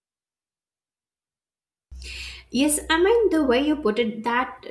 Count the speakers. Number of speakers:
1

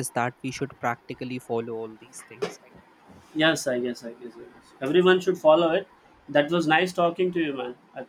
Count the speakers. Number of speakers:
2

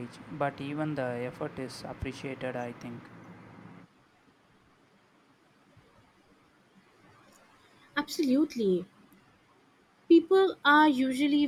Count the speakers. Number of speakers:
2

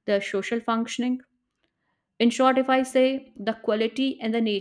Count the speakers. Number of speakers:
1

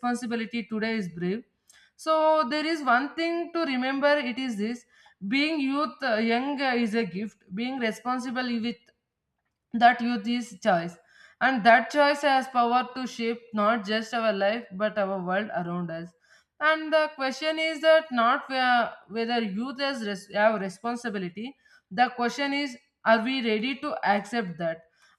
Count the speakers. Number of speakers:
1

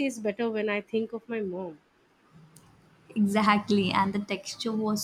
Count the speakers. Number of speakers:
2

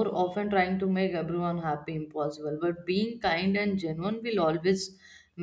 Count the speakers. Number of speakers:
1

